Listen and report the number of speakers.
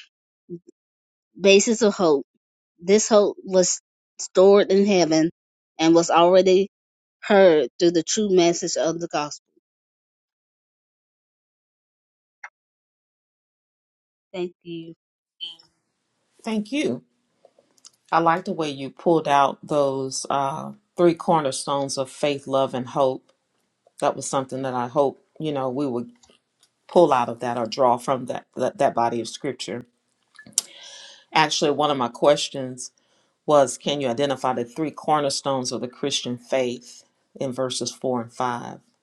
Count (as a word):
two